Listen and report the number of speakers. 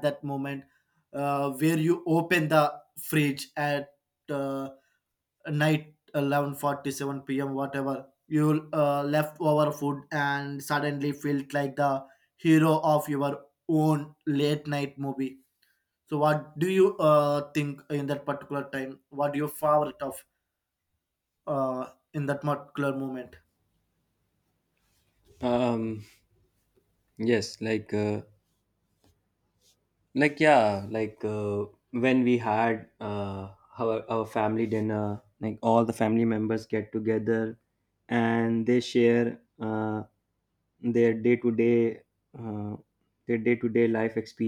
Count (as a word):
two